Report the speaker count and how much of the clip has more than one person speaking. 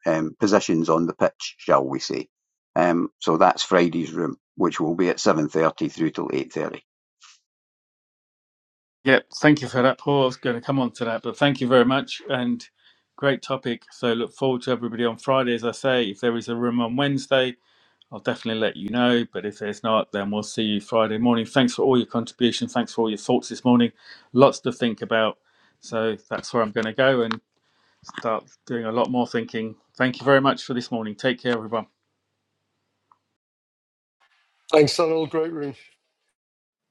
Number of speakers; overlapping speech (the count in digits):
3, no overlap